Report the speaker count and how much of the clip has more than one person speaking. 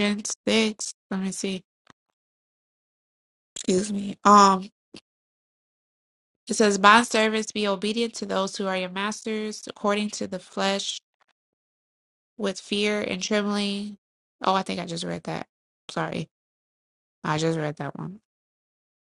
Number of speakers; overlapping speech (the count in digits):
1, no overlap